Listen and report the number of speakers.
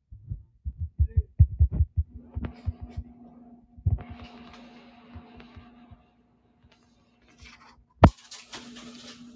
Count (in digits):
0